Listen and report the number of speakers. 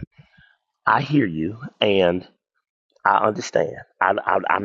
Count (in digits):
1